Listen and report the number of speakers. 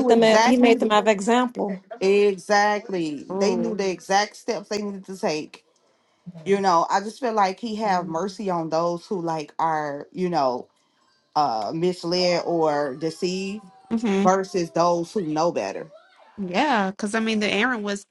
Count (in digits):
3